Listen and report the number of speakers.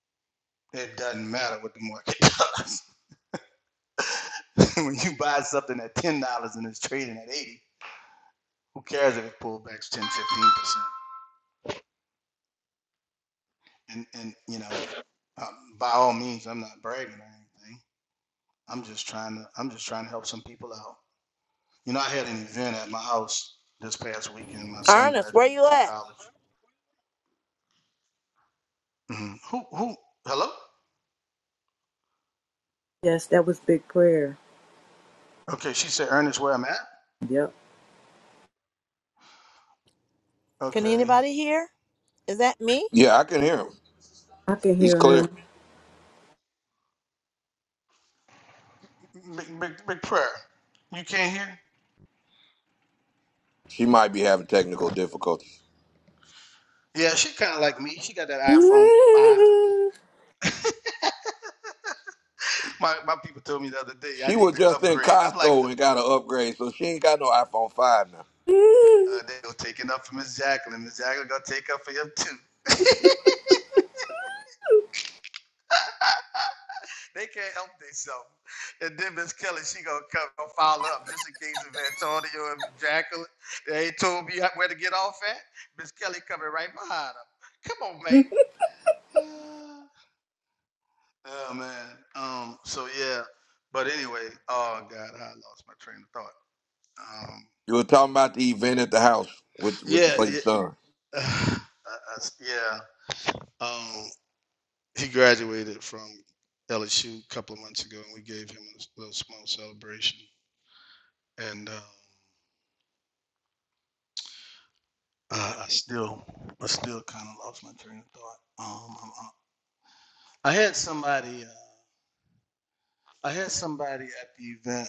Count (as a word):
four